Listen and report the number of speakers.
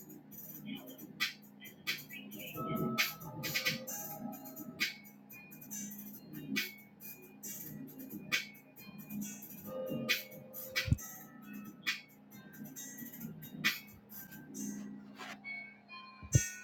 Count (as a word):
zero